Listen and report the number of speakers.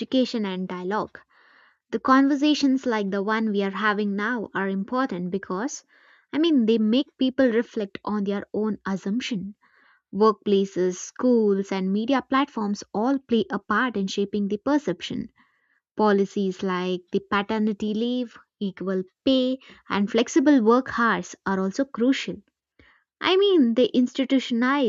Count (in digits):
1